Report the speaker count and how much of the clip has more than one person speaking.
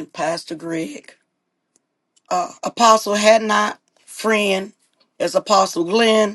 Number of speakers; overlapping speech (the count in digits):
1, no overlap